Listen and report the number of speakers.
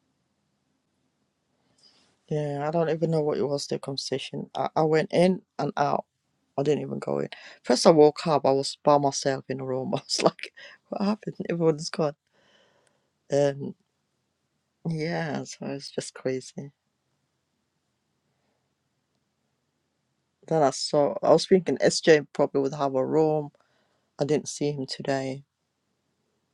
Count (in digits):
1